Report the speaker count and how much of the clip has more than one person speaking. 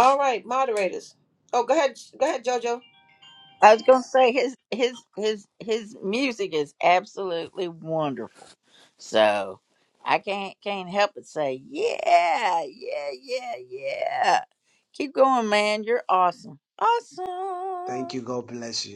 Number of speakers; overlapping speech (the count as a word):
three, no overlap